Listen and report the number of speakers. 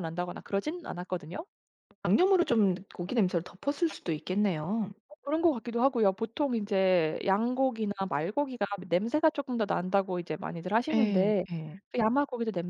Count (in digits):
2